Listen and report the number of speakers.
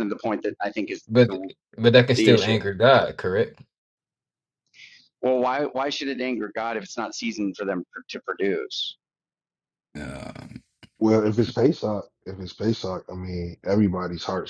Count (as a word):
three